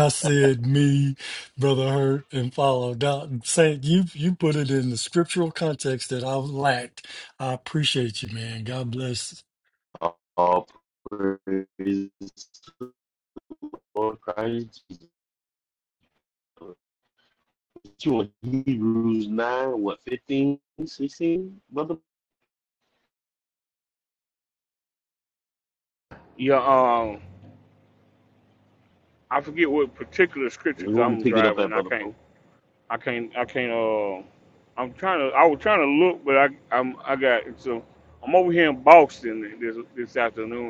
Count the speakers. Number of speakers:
3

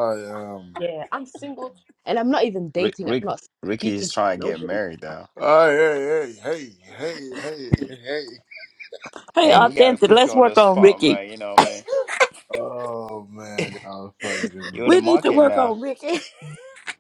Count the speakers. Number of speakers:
4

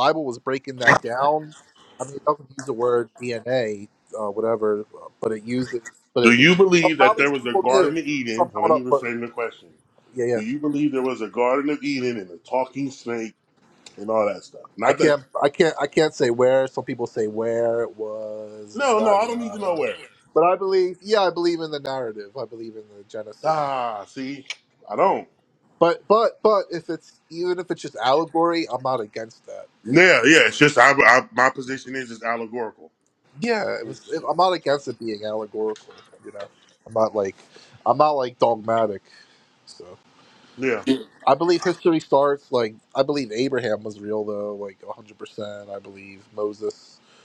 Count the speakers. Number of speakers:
2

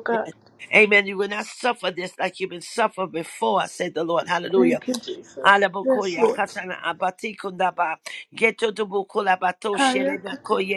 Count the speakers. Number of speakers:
2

